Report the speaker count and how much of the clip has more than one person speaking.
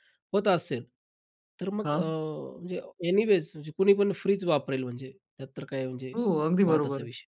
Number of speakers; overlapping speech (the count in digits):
2, about 9%